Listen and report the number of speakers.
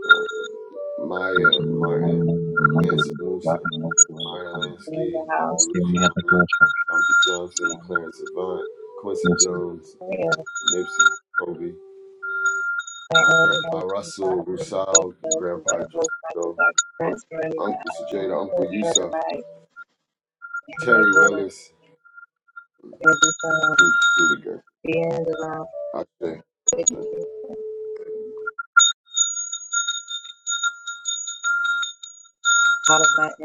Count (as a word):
three